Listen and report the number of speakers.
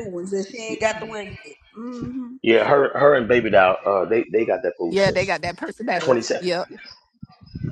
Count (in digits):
3